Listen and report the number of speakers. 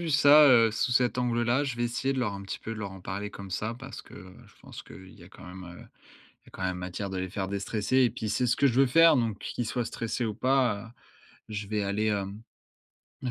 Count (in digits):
1